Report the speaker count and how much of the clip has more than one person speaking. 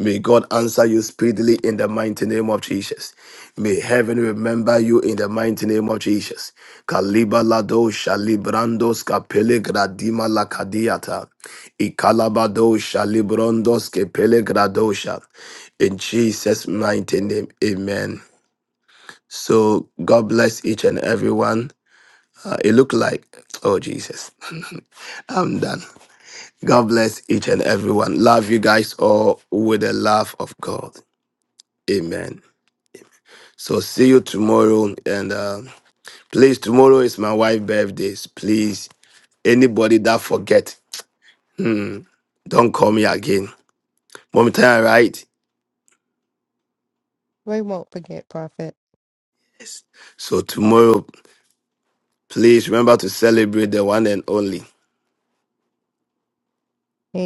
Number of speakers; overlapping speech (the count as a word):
two, no overlap